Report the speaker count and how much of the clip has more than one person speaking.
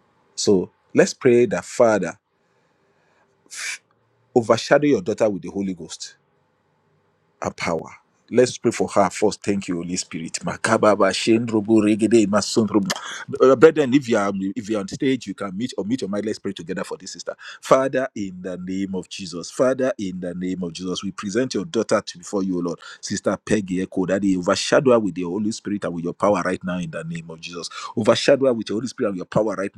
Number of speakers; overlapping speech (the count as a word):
one, no overlap